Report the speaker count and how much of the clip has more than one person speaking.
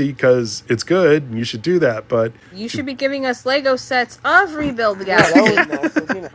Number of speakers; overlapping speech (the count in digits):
3, about 10%